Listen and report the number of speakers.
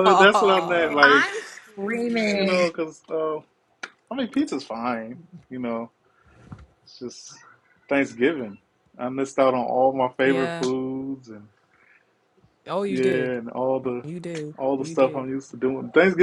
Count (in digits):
3